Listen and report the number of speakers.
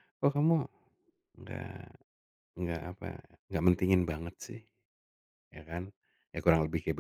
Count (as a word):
one